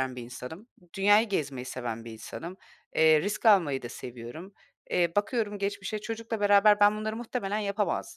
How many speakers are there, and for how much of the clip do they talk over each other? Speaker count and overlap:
1, no overlap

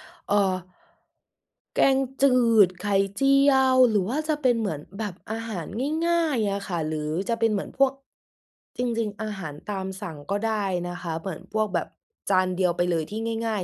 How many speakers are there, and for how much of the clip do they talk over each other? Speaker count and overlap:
1, no overlap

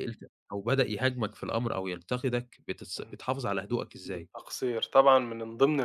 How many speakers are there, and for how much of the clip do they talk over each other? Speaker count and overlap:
2, about 4%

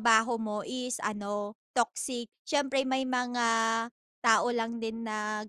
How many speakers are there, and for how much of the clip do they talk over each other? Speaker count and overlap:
1, no overlap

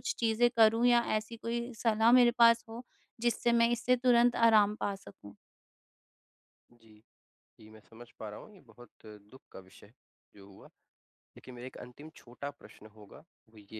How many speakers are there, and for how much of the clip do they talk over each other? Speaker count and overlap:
2, no overlap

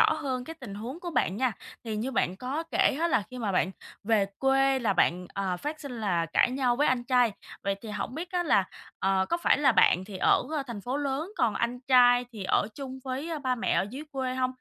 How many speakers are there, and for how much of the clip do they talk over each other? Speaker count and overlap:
1, no overlap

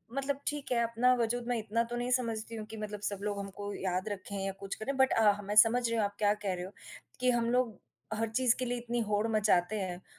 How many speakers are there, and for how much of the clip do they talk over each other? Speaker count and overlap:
1, no overlap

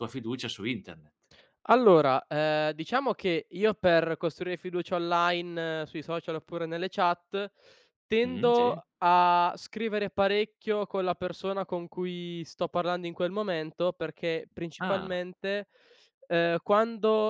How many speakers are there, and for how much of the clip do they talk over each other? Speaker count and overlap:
2, about 5%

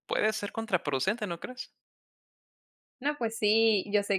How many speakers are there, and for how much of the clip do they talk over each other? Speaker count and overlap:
2, no overlap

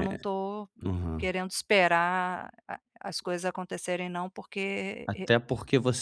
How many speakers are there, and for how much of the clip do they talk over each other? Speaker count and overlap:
2, about 7%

